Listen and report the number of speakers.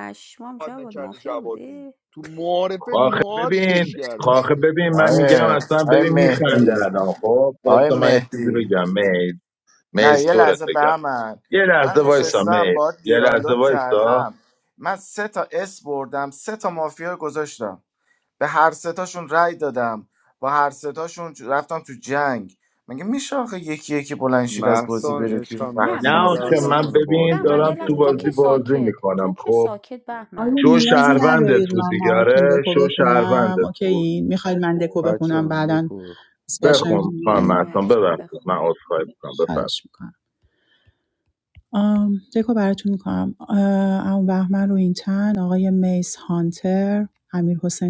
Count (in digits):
5